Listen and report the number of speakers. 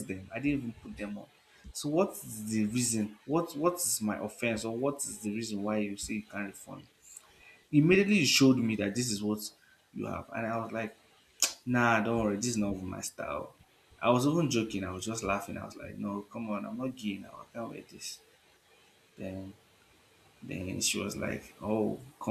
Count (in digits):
1